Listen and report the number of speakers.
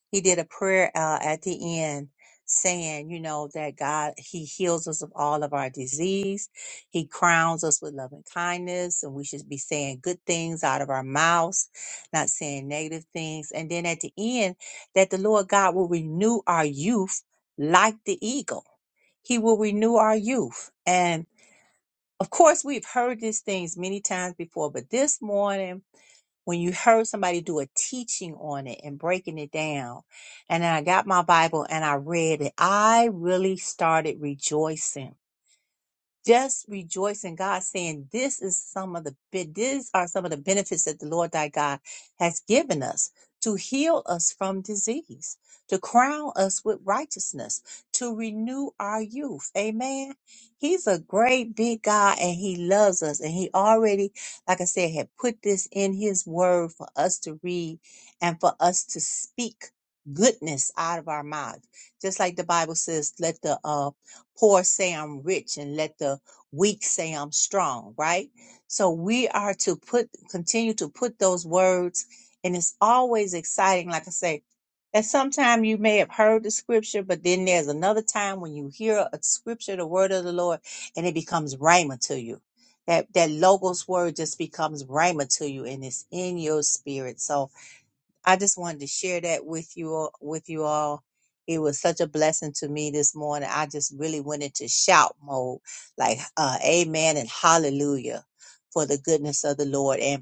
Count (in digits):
1